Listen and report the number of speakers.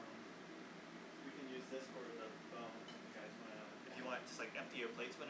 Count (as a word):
one